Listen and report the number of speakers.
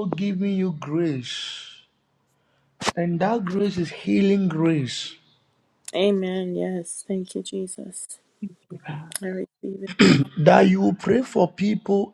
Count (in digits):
2